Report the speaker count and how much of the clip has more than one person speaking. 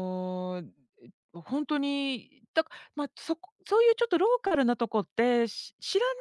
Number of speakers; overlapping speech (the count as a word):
one, no overlap